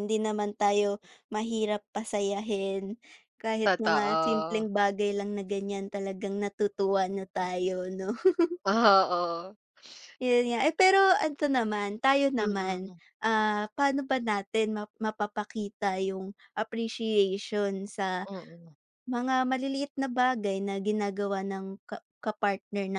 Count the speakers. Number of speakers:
two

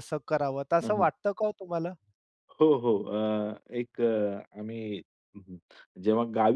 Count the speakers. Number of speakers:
two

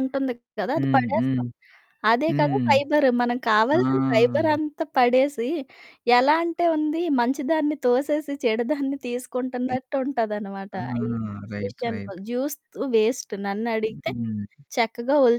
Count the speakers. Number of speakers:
two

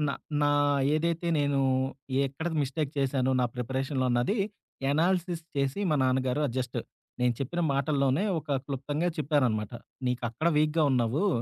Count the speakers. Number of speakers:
one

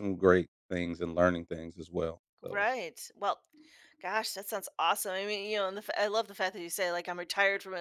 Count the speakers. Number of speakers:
two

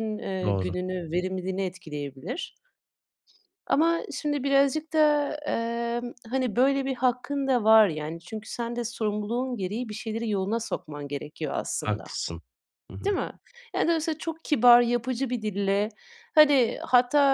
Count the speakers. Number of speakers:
two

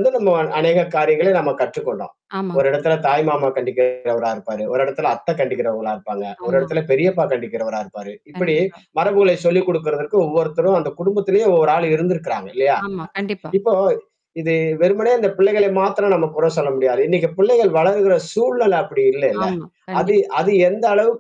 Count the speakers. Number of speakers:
two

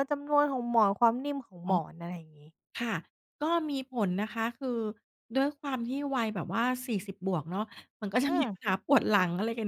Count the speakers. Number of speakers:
two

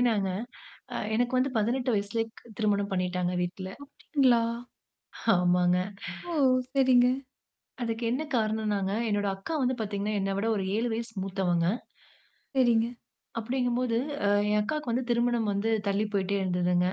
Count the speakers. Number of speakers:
two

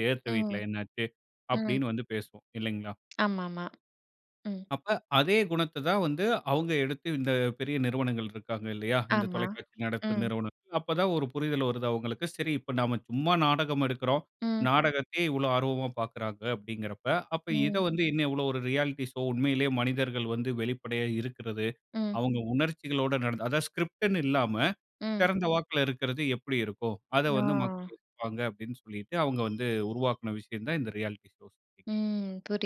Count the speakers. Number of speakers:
two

